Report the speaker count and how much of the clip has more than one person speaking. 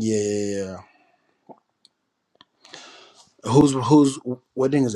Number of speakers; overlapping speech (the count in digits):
1, no overlap